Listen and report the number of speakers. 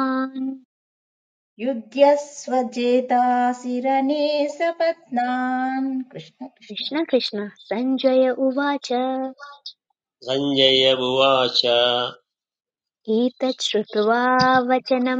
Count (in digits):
3